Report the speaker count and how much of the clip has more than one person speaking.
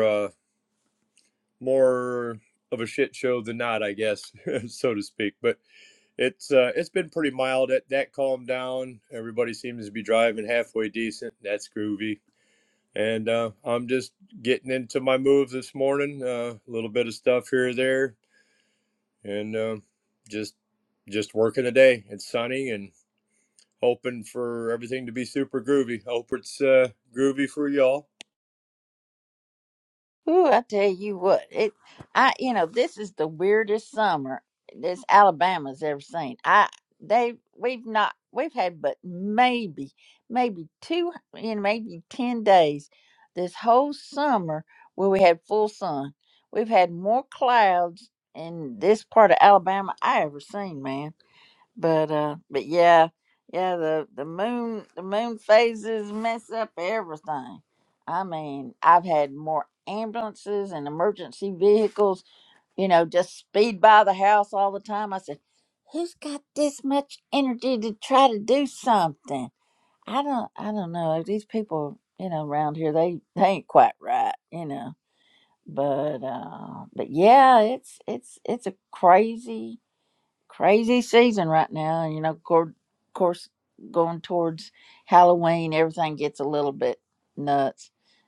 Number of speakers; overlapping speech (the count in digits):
2, no overlap